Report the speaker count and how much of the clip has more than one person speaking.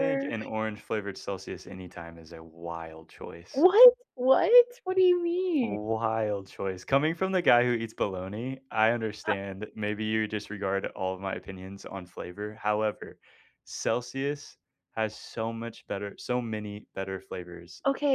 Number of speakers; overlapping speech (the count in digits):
2, about 4%